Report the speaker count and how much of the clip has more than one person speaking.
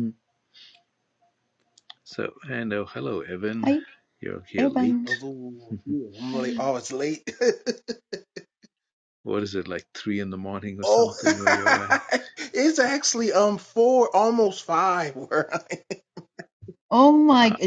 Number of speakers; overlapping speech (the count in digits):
3, about 7%